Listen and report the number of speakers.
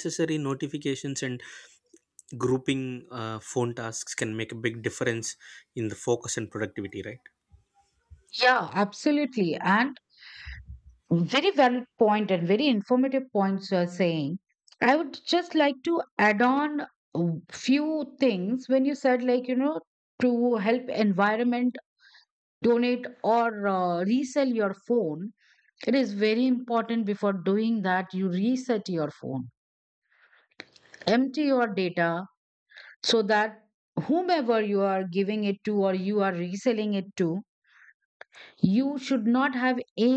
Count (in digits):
2